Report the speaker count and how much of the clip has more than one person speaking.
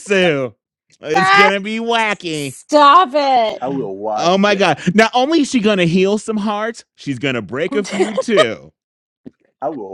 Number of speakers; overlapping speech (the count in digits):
3, about 9%